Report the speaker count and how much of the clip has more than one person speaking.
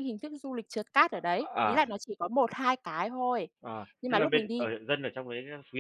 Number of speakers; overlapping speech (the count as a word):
two, about 18%